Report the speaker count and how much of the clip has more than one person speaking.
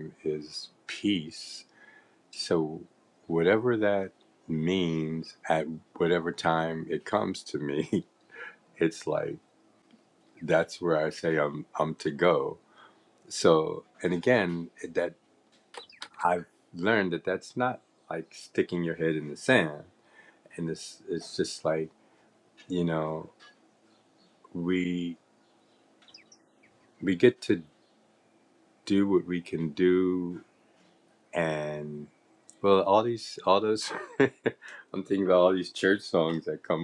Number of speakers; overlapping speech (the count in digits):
1, no overlap